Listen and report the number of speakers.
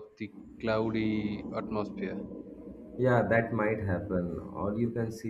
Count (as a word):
two